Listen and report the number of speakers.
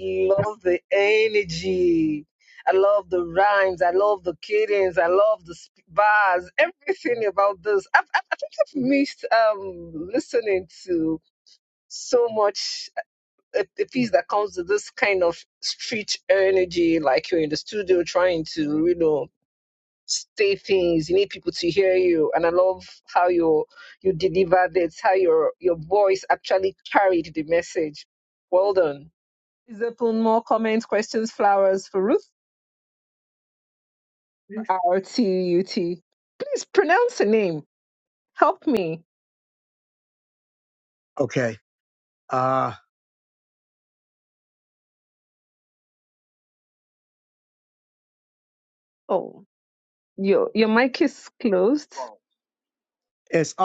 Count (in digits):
2